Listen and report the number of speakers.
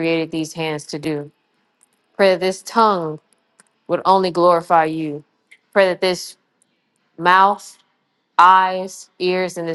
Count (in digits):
1